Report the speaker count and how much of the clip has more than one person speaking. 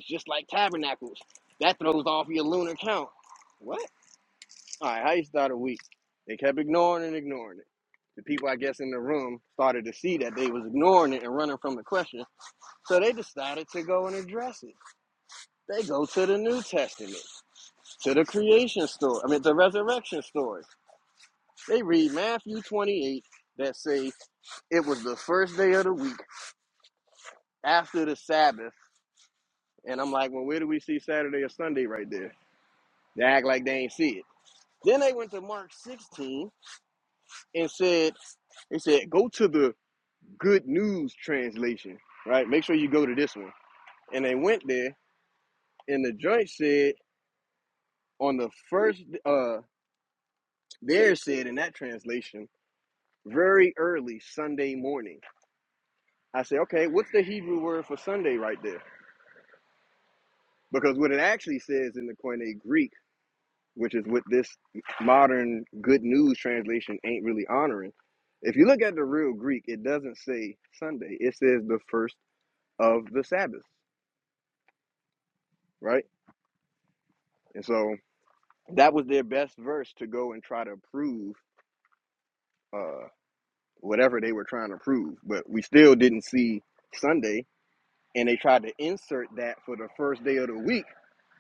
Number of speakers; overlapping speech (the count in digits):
1, no overlap